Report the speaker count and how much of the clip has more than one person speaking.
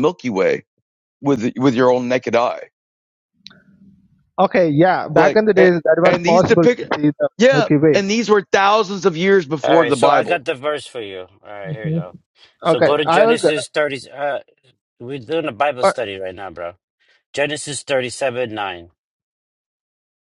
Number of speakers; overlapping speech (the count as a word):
three, about 20%